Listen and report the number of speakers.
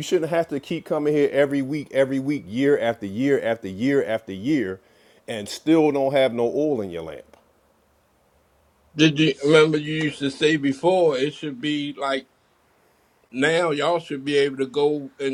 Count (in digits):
2